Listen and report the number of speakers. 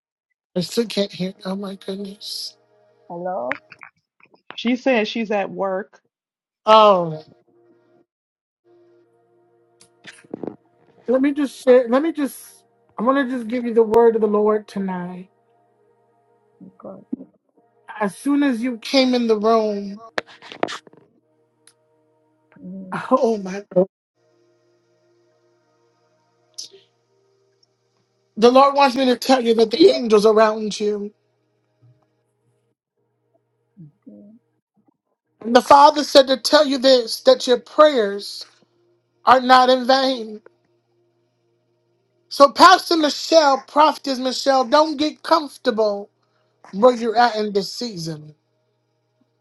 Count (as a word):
three